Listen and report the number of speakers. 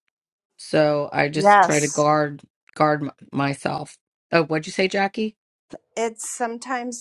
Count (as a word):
two